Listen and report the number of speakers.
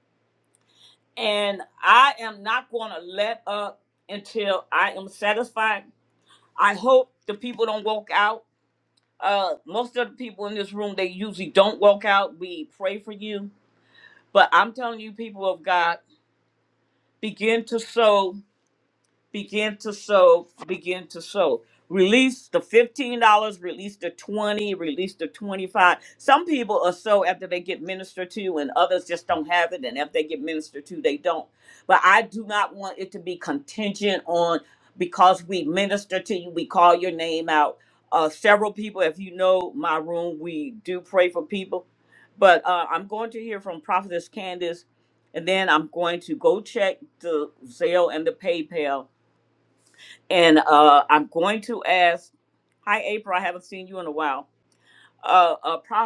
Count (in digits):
1